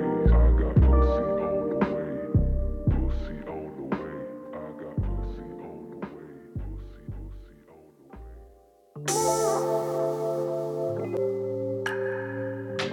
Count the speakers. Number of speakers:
zero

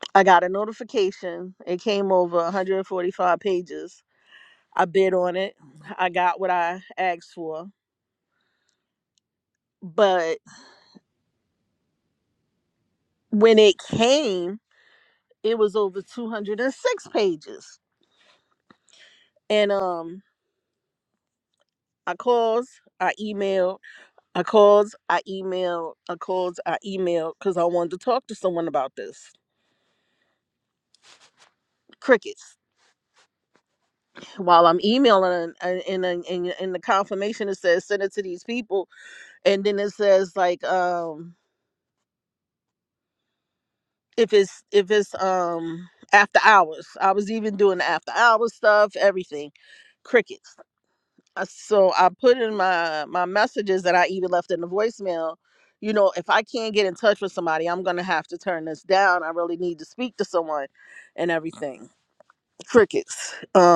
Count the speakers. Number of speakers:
one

